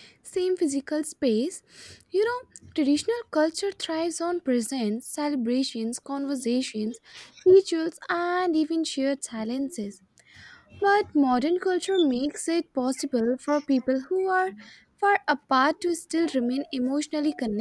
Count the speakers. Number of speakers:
1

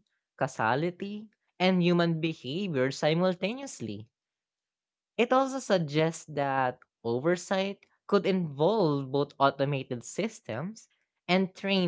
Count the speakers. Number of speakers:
1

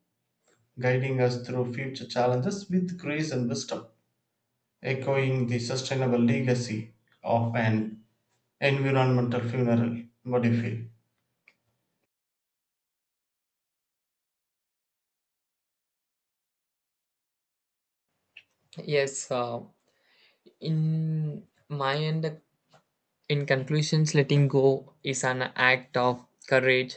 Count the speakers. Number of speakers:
2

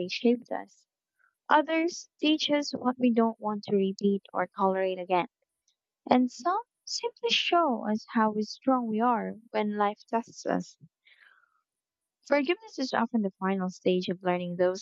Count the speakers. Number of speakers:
1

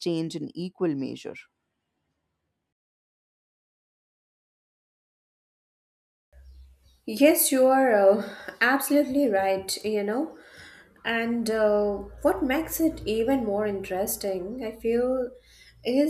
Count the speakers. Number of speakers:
2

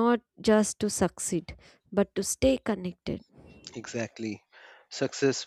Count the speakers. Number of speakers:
2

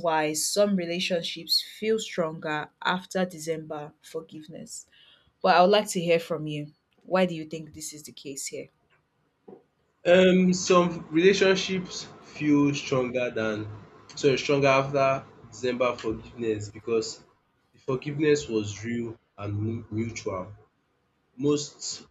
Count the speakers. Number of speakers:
2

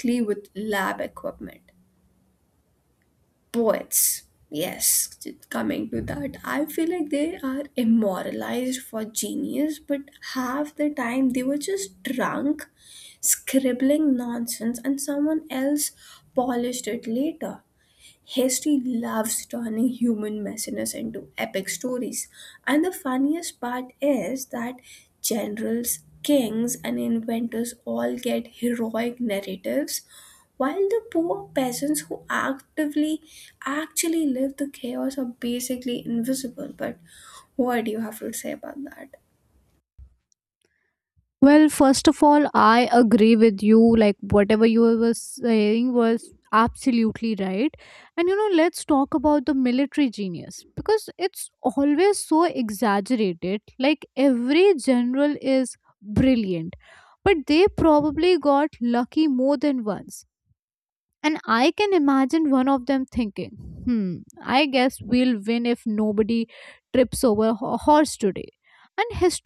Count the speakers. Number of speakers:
2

